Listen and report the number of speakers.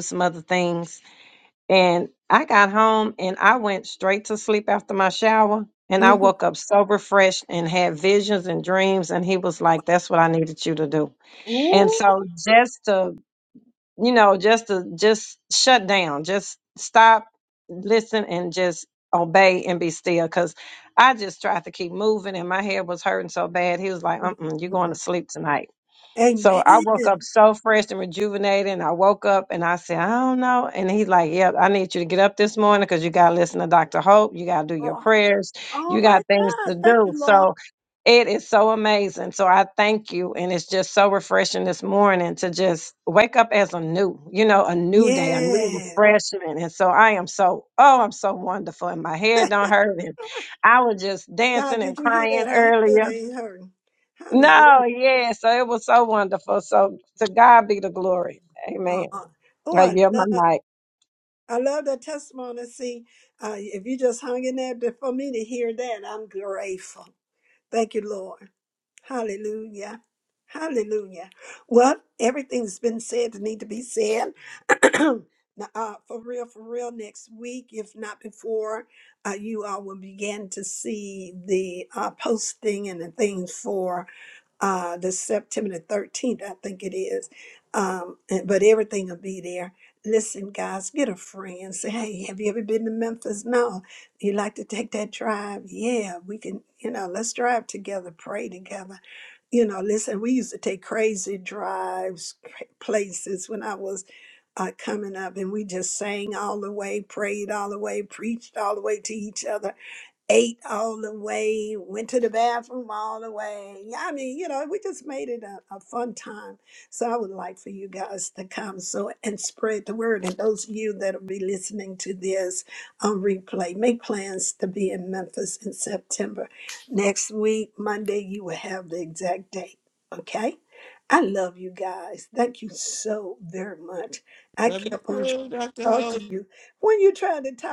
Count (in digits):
3